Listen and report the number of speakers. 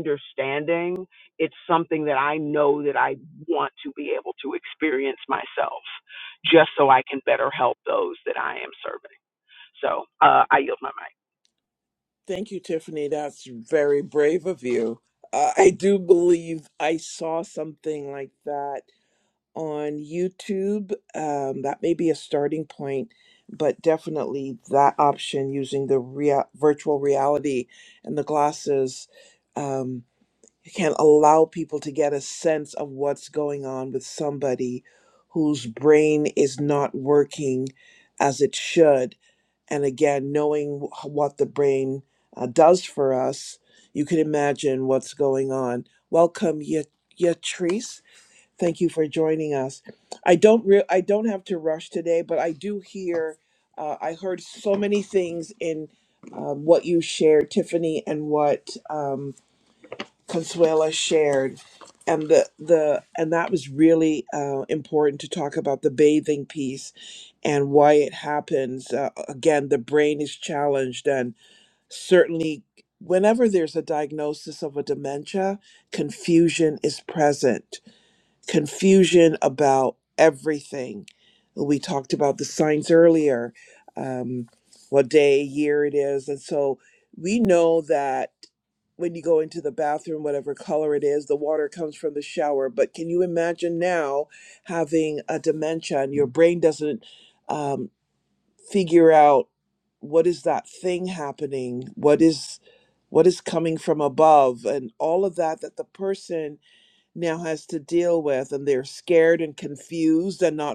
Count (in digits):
2